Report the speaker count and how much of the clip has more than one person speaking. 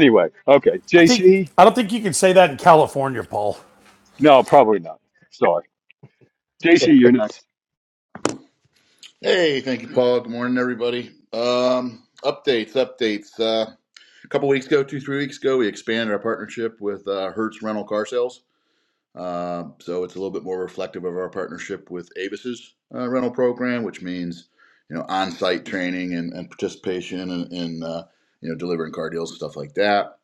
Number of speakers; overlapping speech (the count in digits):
3, about 1%